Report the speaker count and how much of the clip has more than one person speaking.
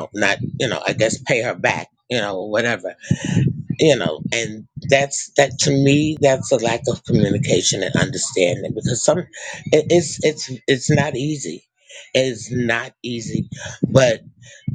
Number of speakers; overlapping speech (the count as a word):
one, no overlap